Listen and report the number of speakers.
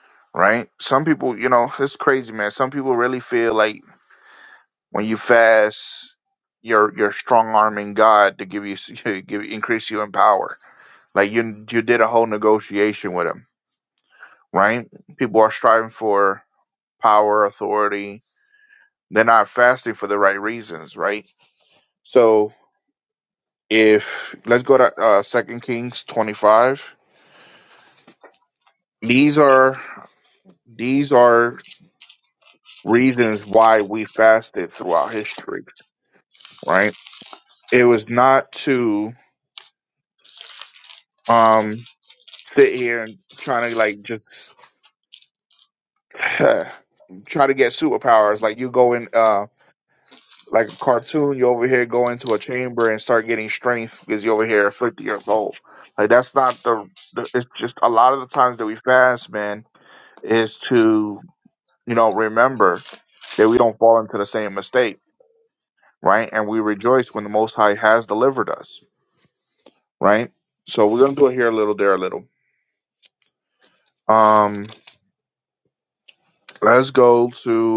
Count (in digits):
1